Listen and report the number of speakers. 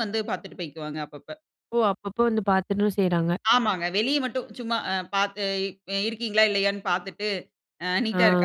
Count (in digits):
2